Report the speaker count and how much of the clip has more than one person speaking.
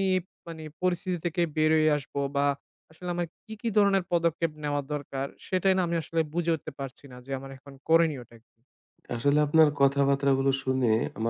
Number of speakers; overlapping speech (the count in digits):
2, no overlap